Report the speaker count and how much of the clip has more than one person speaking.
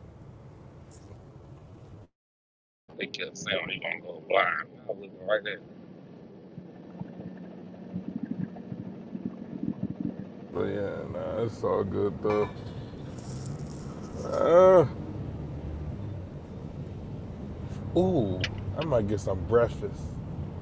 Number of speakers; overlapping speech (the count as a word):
two, no overlap